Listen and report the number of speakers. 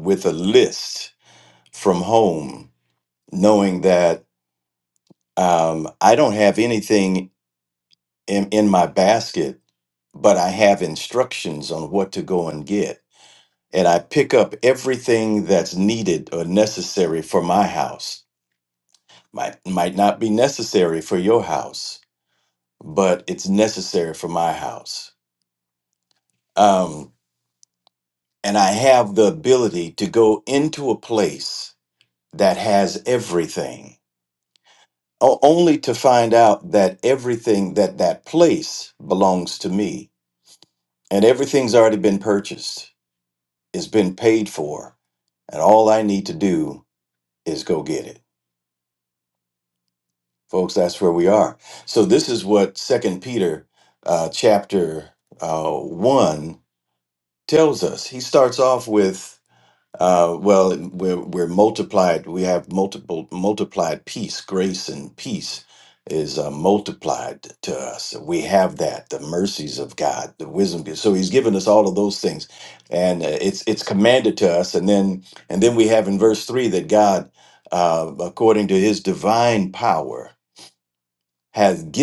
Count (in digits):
1